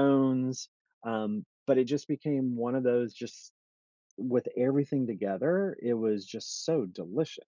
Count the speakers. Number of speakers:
1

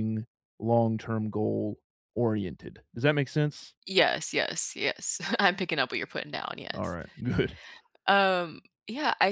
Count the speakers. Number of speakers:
2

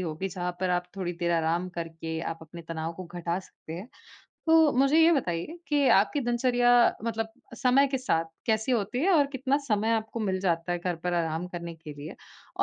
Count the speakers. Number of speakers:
1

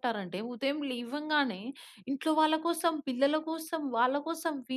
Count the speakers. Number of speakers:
1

